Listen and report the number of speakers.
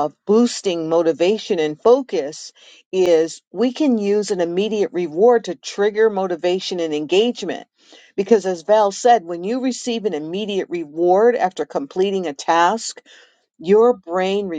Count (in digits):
1